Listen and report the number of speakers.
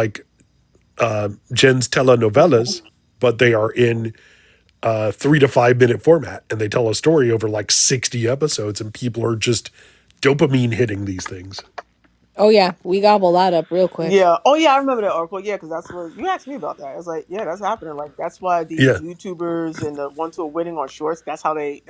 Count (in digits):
3